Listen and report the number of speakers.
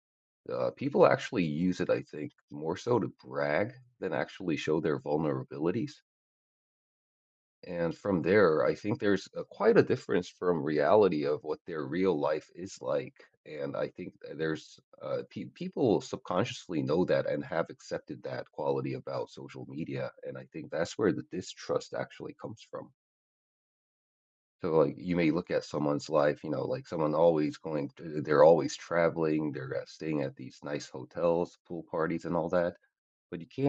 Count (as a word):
one